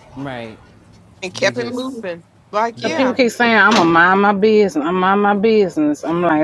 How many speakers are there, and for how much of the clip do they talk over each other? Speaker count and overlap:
3, about 11%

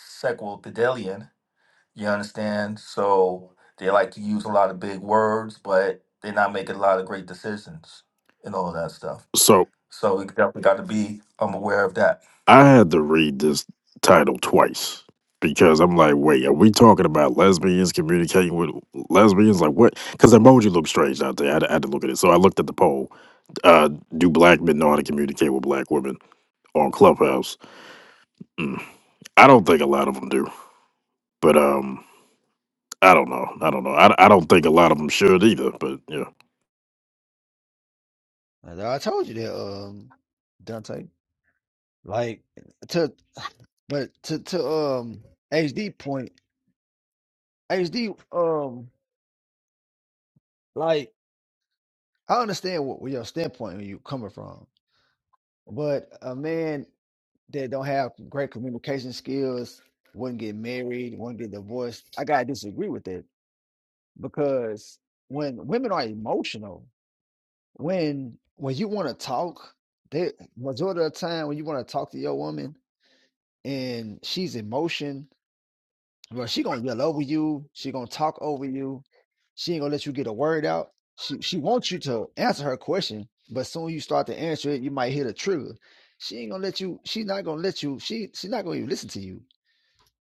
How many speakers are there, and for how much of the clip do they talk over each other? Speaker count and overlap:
3, no overlap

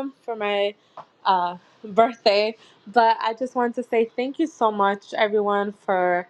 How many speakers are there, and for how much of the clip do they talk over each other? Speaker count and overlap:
1, no overlap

